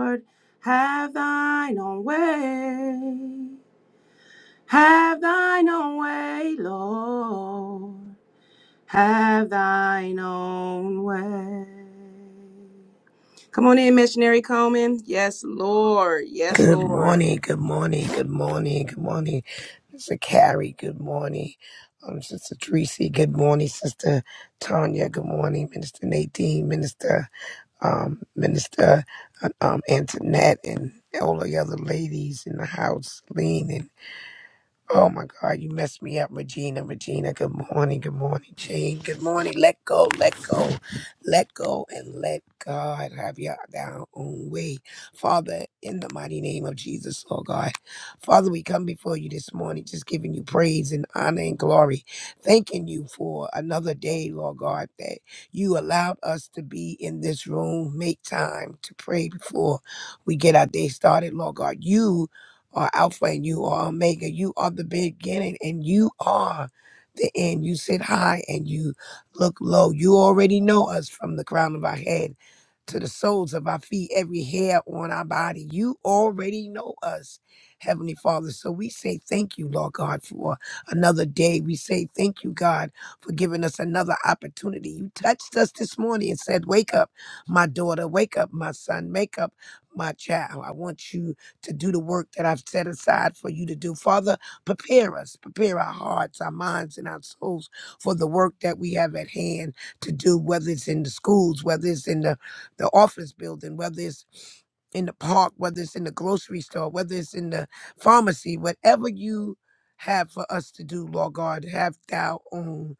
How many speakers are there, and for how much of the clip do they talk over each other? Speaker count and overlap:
2, about 1%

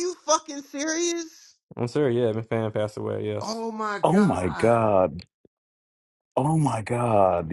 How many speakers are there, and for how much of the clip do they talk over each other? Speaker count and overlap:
3, about 12%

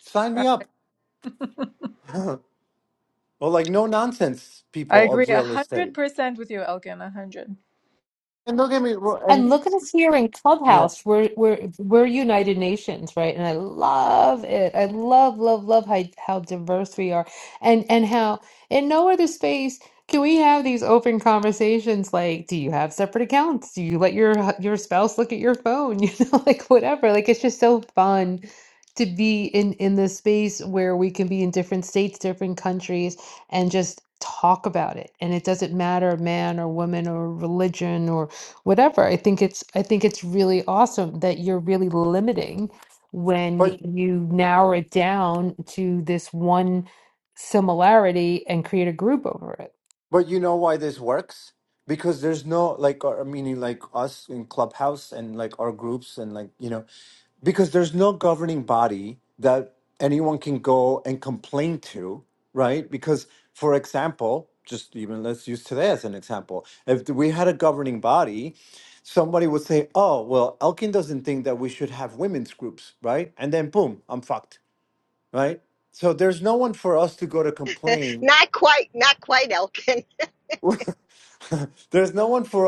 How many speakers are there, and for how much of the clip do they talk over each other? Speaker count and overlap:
4, about 2%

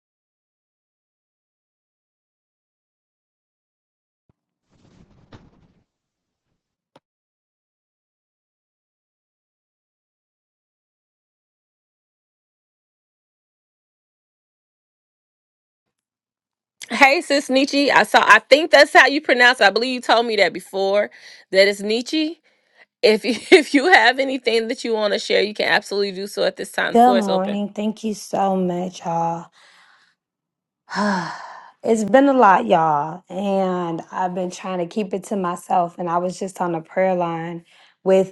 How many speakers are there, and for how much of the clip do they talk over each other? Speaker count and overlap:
2, about 2%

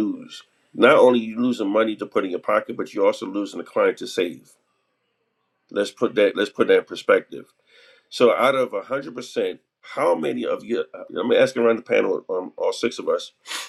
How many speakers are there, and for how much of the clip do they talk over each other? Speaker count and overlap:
1, no overlap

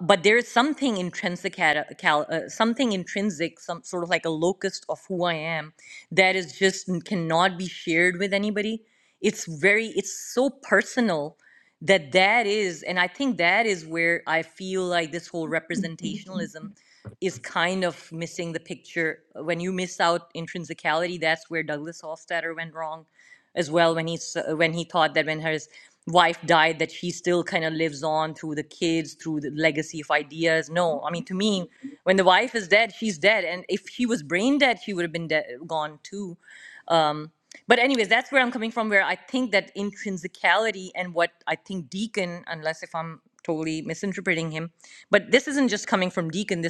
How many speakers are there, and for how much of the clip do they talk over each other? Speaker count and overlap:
1, no overlap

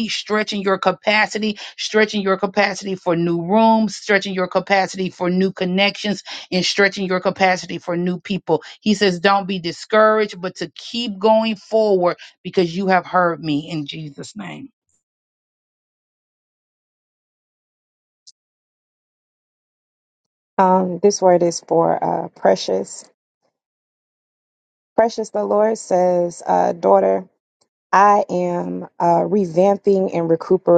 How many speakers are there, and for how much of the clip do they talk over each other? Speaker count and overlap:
2, no overlap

